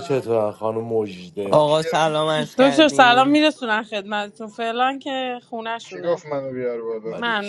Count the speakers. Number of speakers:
four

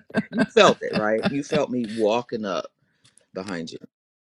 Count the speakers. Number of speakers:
one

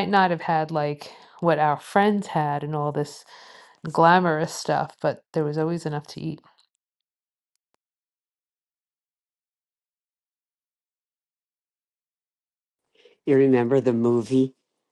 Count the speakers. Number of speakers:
two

